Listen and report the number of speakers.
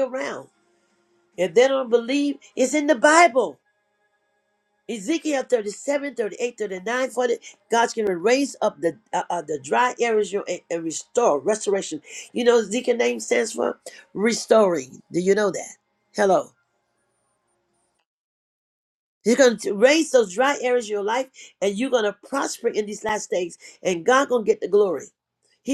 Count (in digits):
1